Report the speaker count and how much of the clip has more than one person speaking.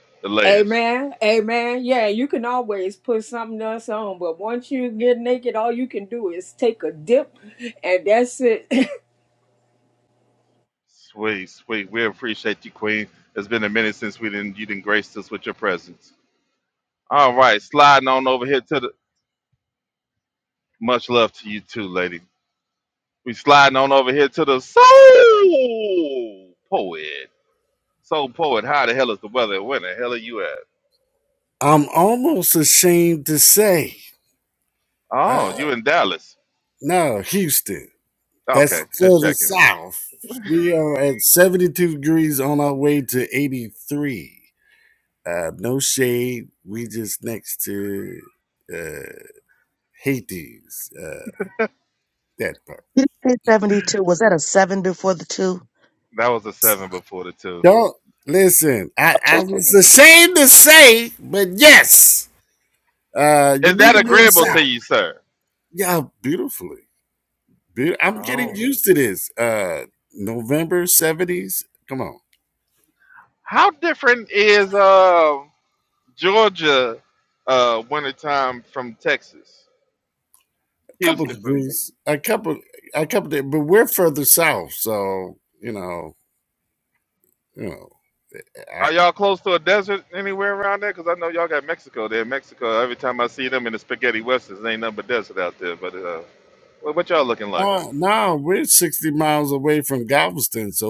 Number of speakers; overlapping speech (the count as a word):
four, about 4%